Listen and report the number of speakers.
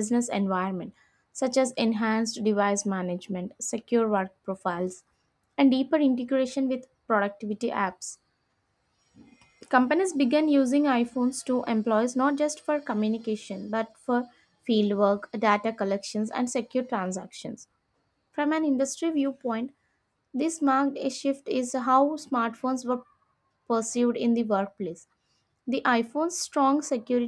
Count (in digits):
1